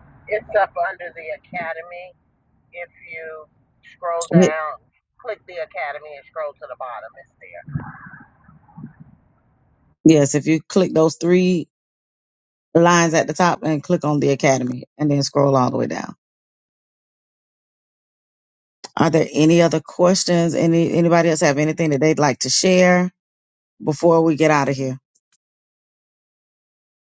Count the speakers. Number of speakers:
2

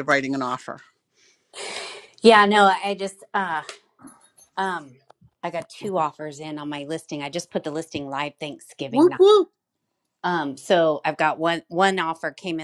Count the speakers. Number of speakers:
2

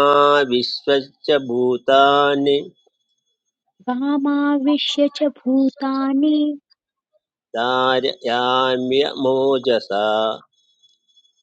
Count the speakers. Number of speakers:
2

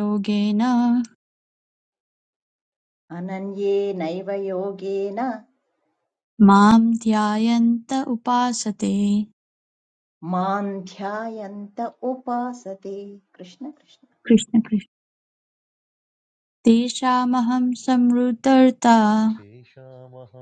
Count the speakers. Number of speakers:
3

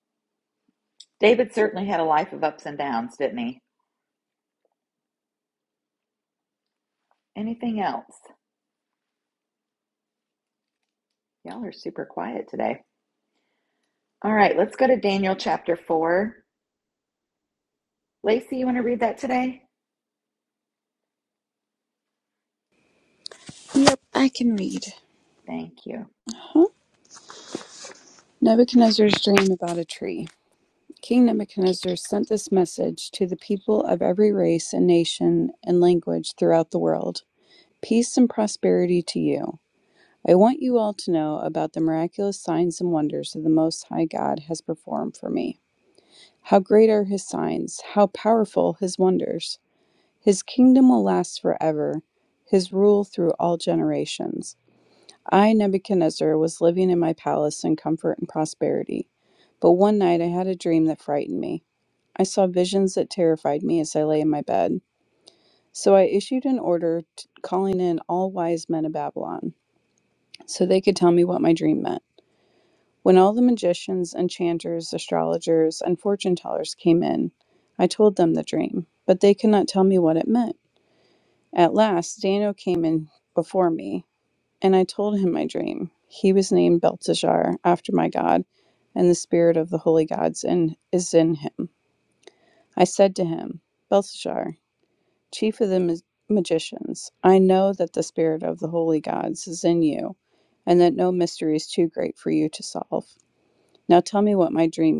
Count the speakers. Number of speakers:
2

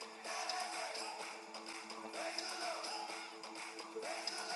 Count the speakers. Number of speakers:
0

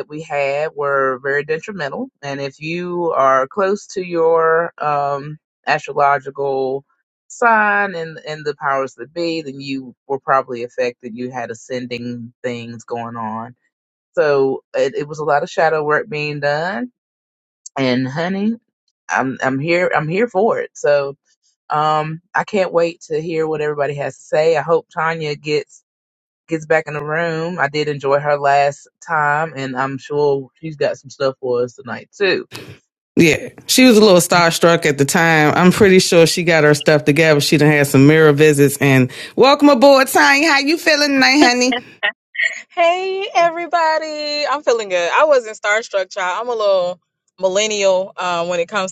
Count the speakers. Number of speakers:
3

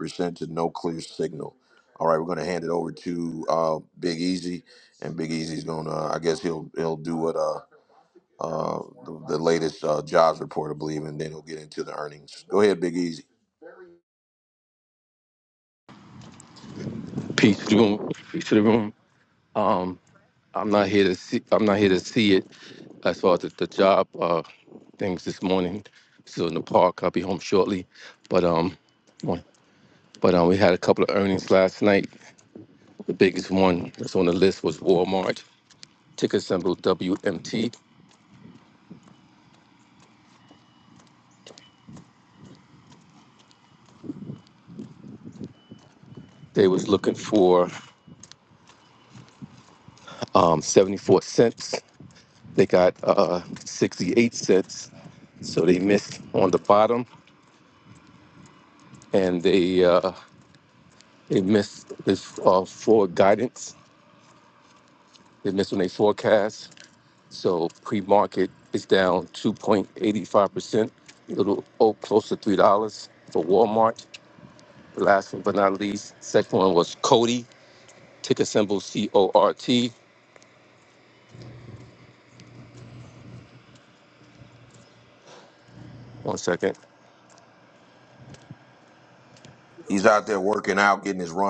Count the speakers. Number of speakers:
2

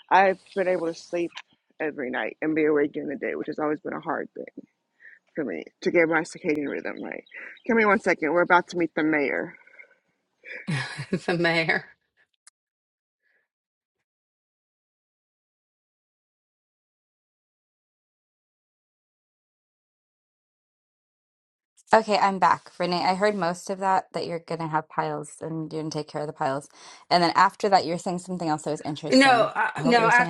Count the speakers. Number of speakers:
3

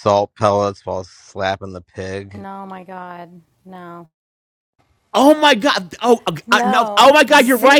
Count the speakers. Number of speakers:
3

